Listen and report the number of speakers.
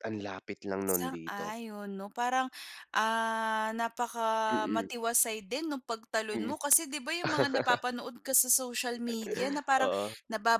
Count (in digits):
2